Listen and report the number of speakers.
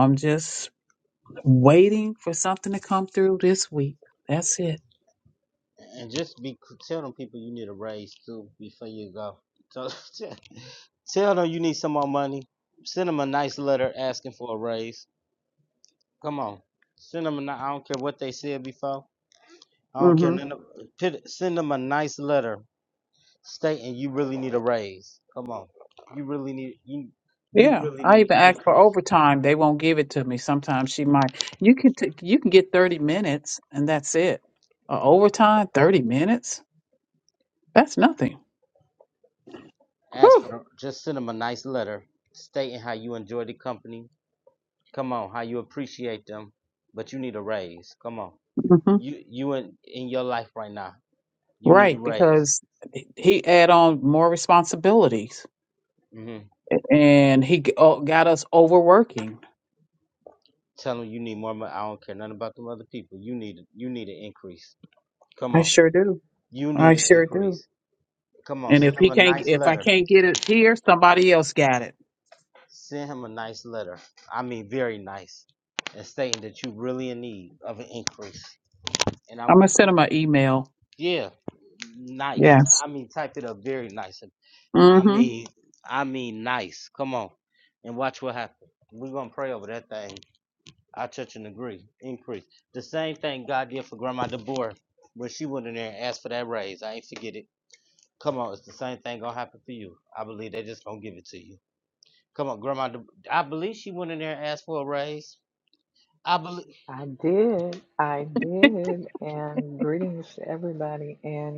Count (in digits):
3